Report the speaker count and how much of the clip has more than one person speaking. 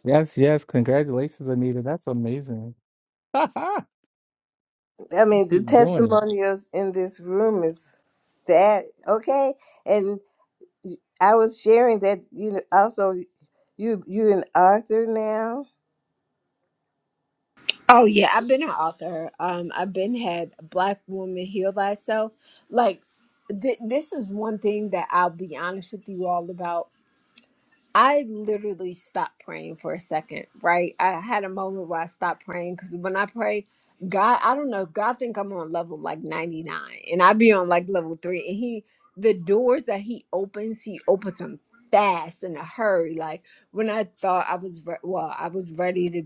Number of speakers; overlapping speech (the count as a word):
three, about 1%